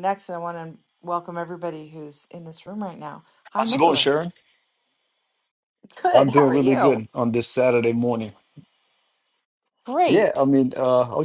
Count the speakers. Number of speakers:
2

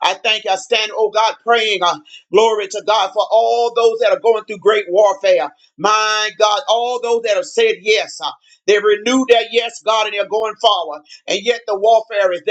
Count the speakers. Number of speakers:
1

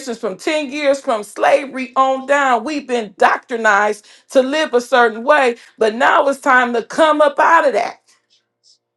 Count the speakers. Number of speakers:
1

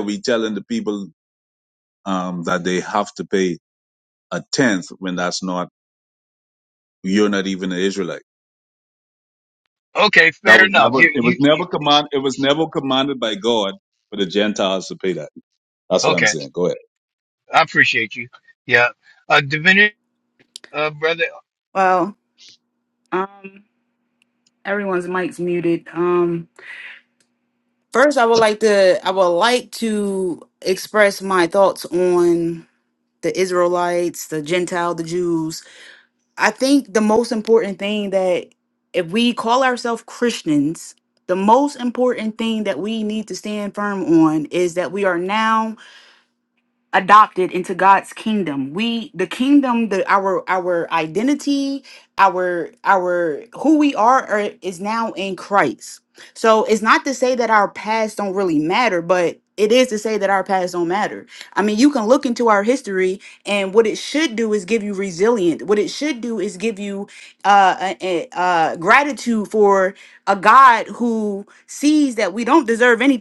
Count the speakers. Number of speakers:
3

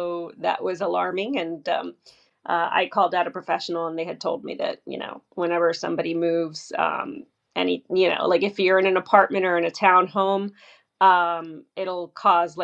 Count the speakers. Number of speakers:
1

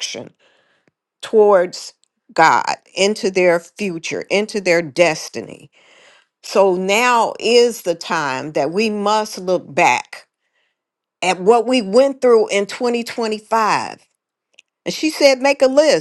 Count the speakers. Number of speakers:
1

